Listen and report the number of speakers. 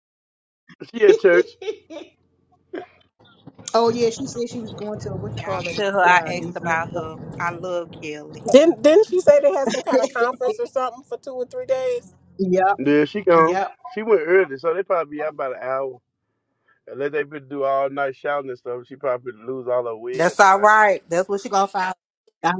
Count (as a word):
four